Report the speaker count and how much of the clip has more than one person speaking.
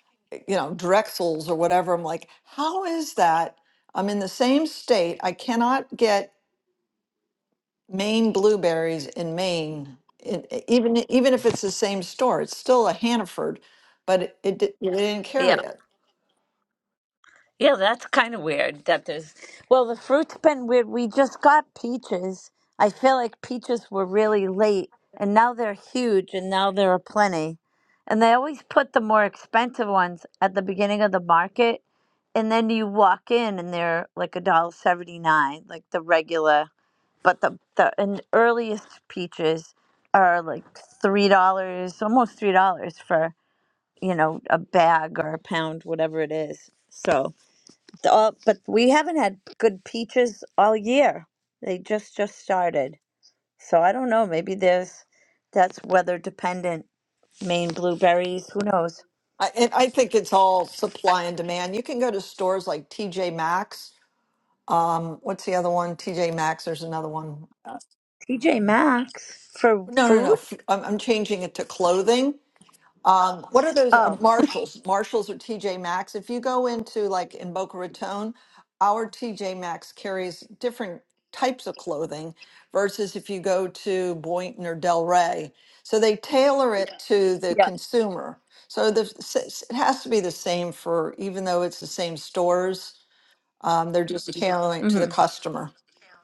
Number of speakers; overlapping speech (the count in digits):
2, about 2%